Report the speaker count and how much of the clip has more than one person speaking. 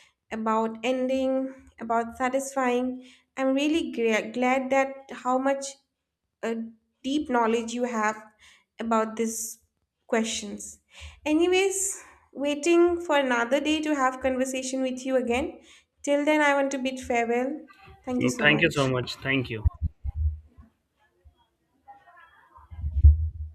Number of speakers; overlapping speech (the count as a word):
two, about 2%